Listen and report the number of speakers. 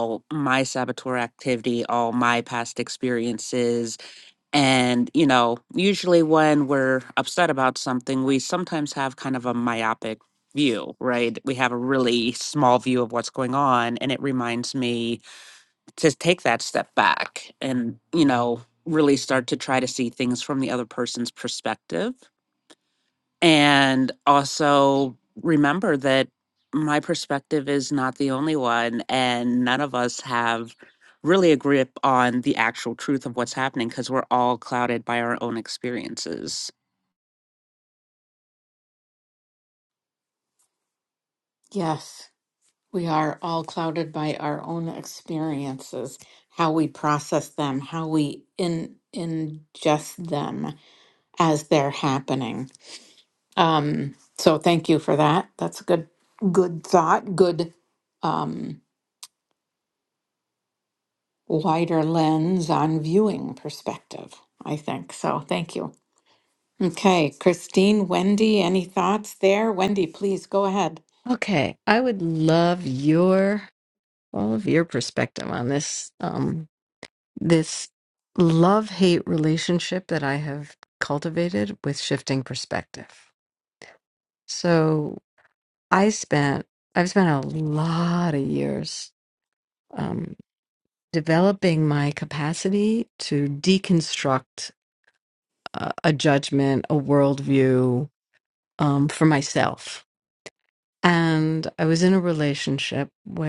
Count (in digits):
3